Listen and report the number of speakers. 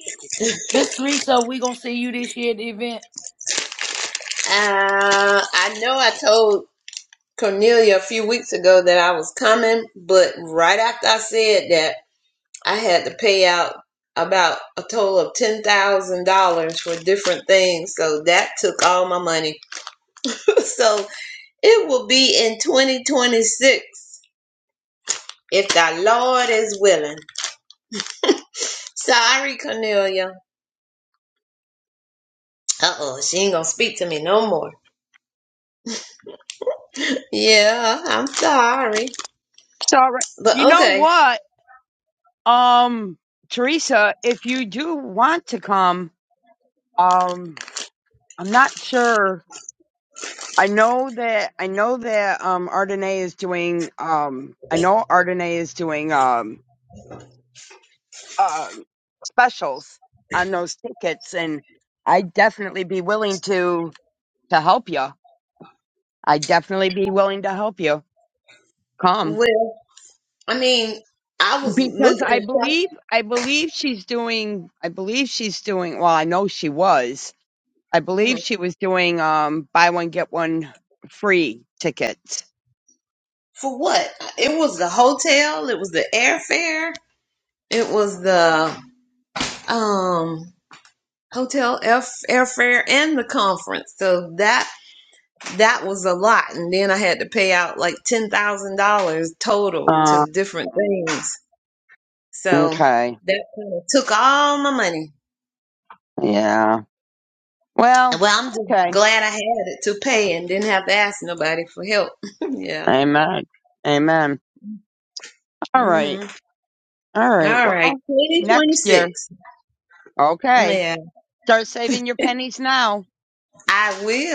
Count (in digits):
3